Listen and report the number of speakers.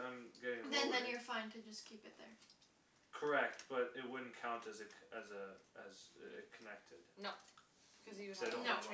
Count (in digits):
3